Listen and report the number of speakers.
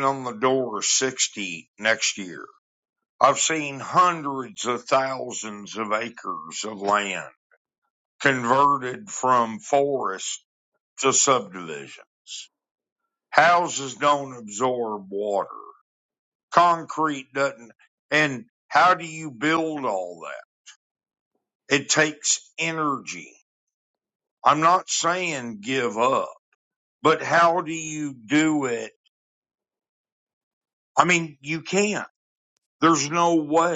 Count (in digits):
1